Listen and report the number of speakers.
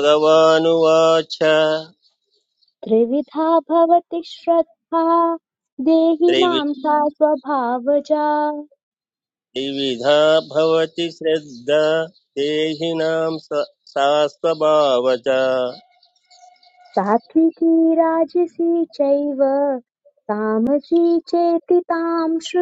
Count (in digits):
2